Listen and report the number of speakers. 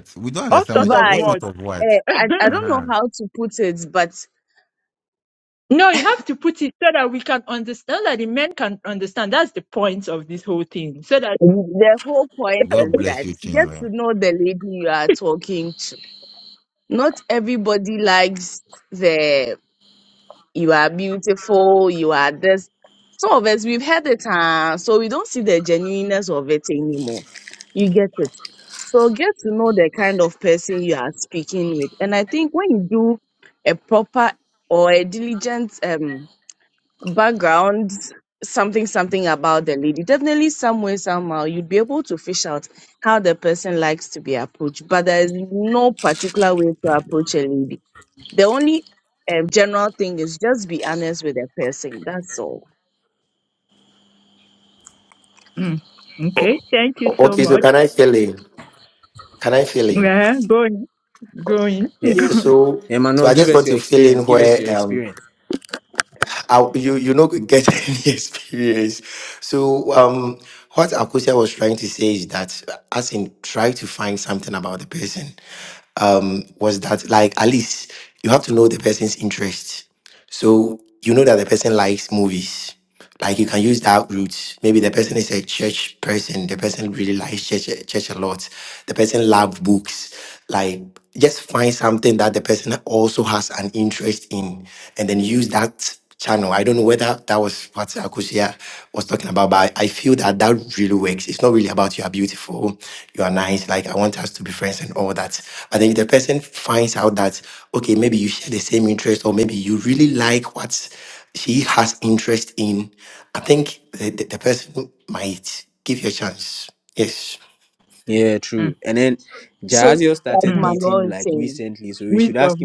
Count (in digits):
5